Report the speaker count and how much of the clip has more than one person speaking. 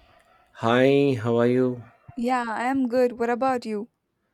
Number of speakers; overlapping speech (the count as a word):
two, no overlap